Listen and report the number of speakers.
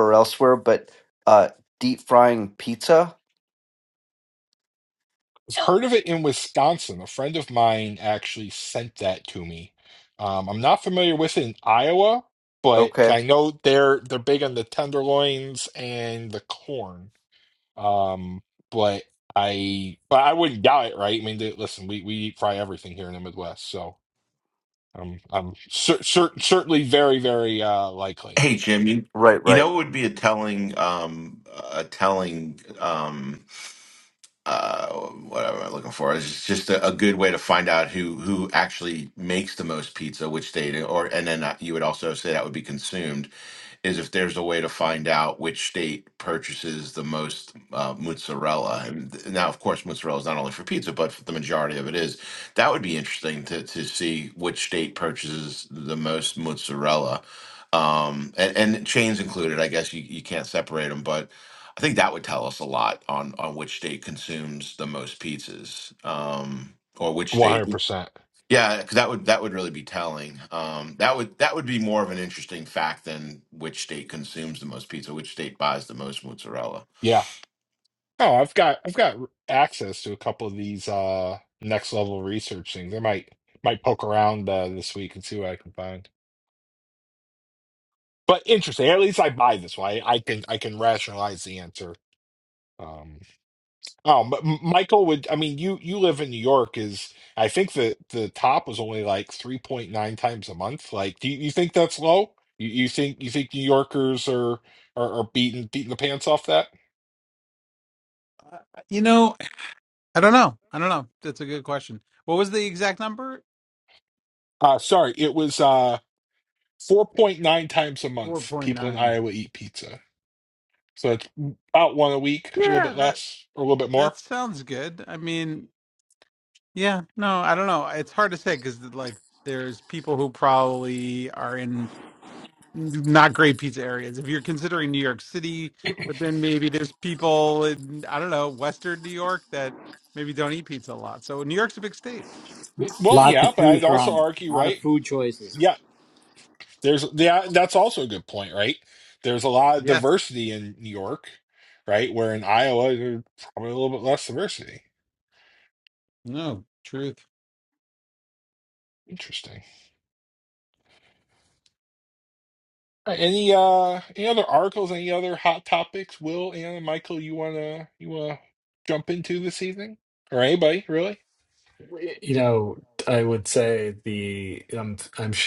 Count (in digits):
6